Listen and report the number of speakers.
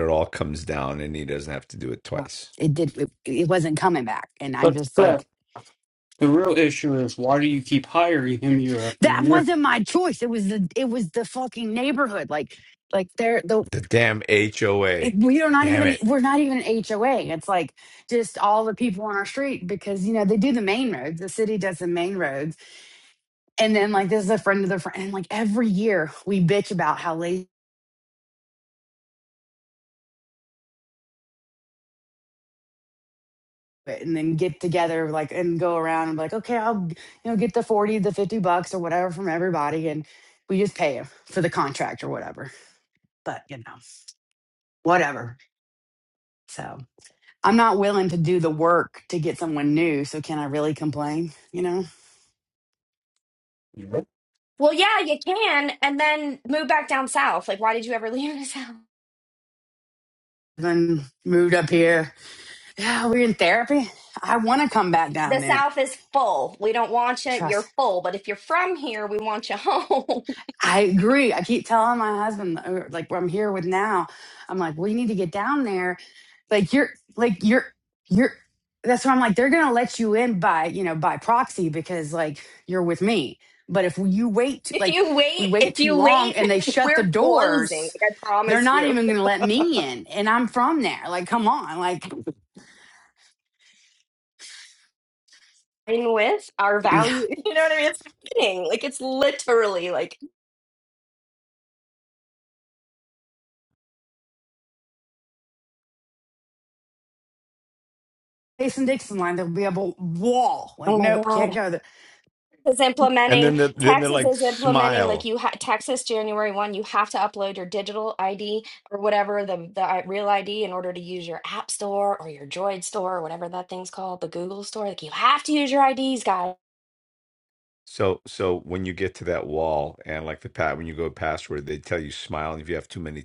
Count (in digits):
4